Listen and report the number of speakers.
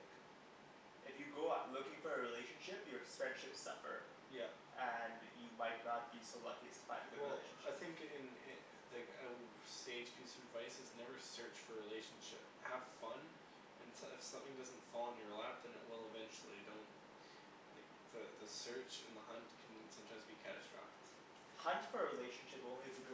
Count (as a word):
two